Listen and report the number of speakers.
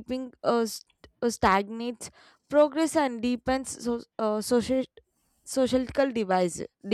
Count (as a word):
one